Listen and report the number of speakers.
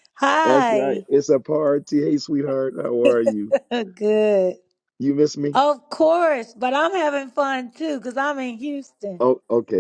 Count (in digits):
2